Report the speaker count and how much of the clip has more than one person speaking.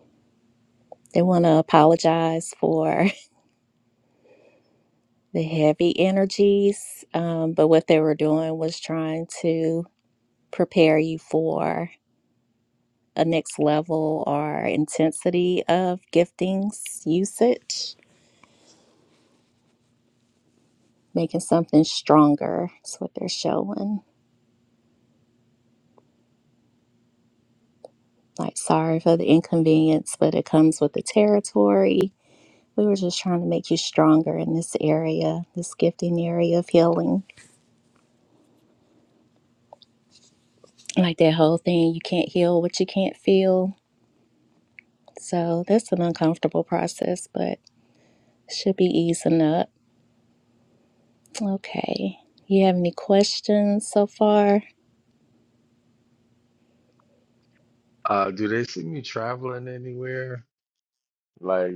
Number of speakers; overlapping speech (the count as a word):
two, no overlap